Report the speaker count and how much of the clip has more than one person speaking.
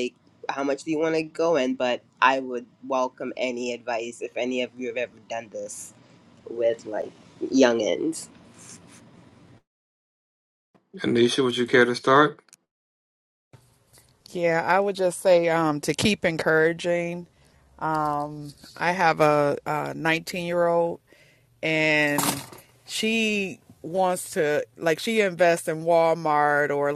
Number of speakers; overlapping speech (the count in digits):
3, no overlap